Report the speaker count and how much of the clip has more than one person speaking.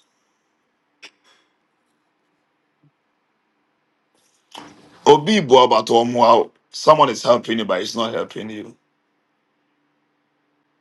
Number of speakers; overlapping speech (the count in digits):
1, no overlap